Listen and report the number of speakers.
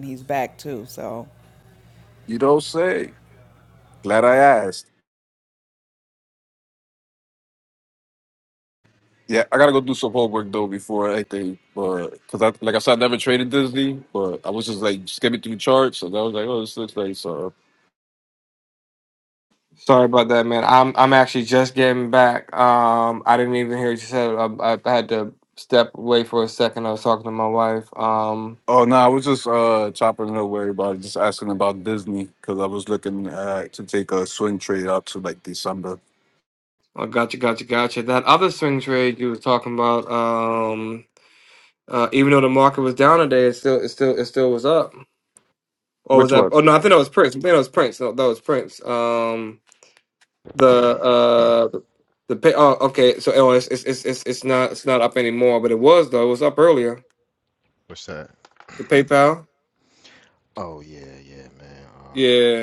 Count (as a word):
four